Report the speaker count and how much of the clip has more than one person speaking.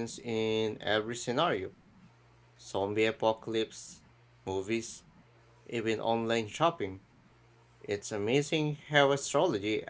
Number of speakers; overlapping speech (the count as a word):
one, no overlap